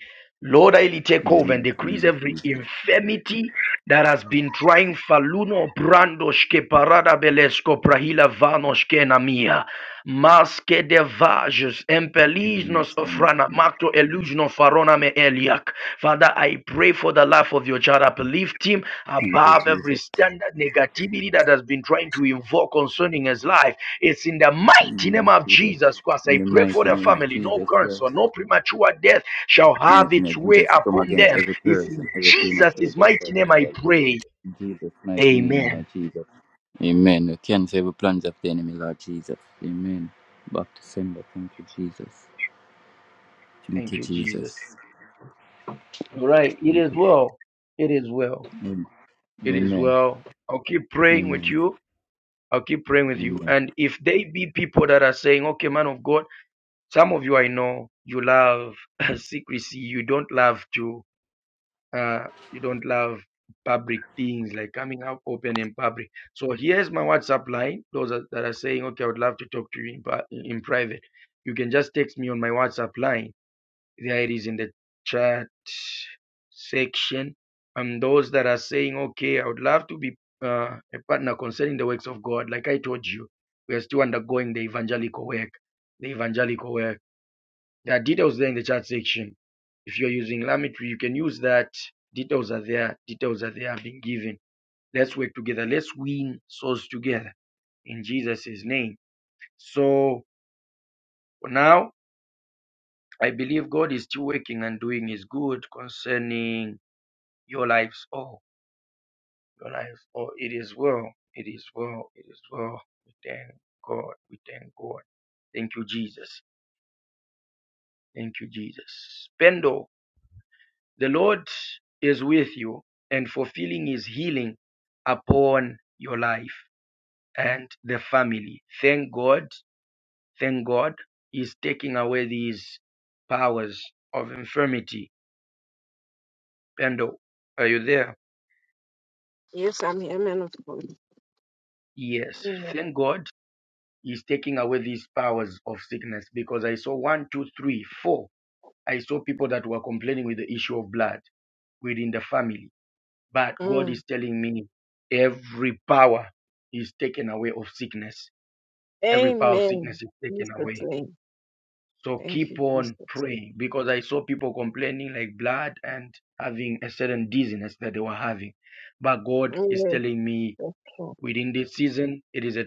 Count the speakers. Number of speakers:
3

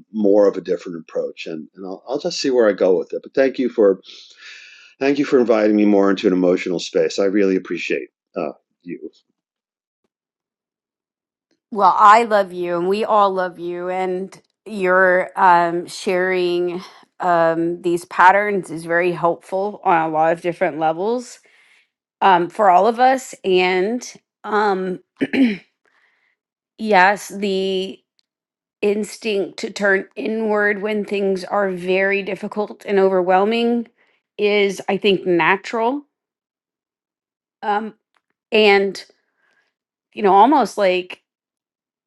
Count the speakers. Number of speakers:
2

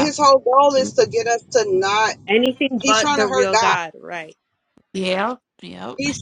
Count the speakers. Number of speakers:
3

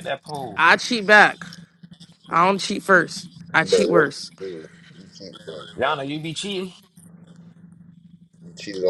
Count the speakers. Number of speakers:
3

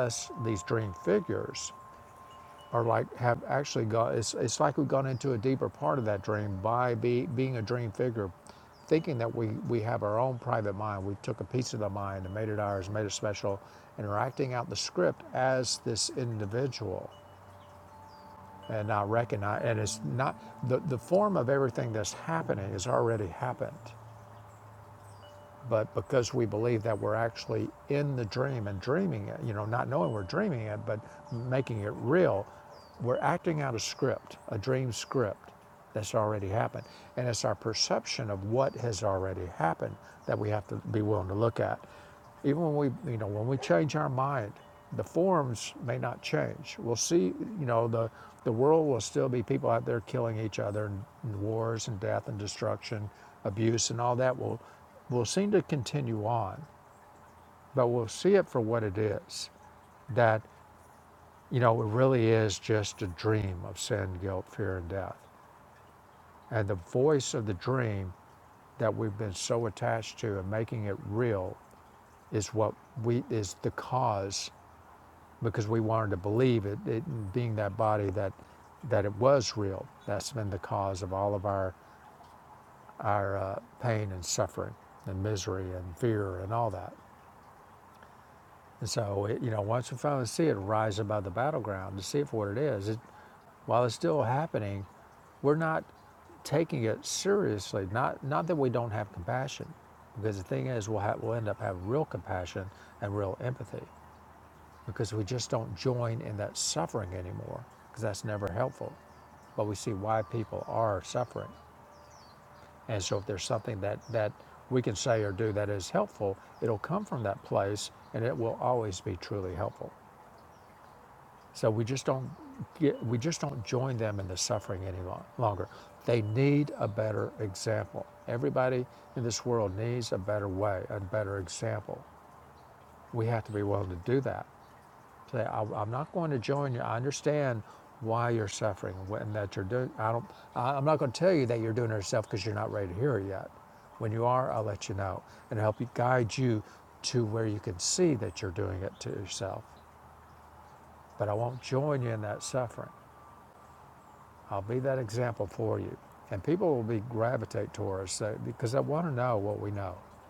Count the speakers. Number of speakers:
1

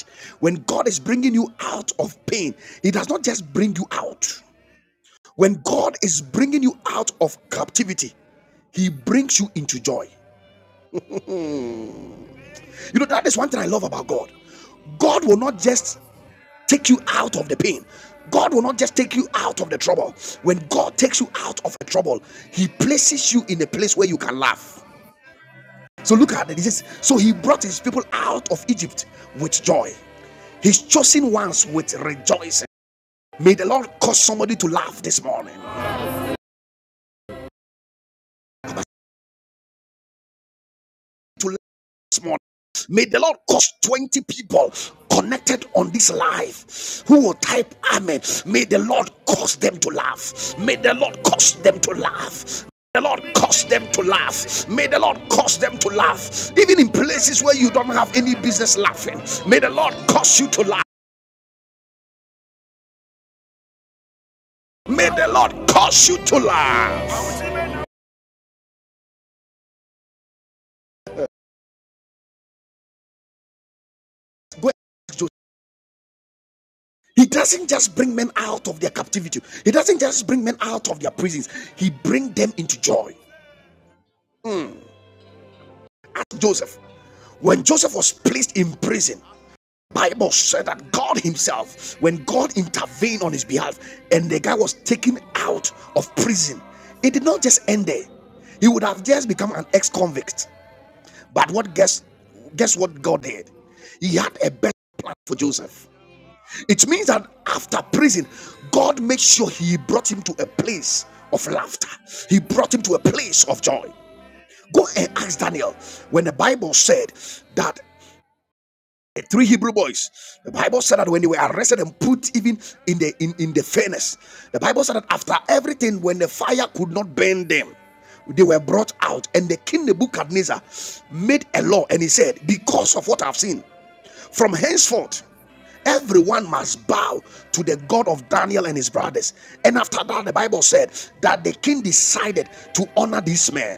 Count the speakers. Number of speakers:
1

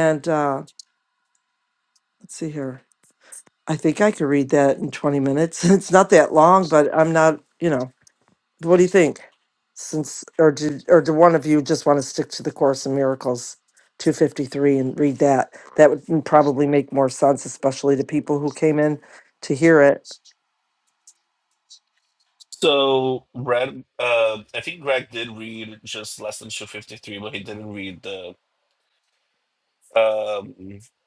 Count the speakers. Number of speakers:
2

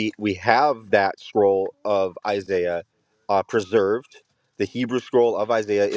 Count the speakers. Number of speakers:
1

